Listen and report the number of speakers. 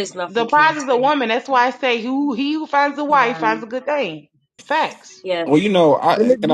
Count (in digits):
3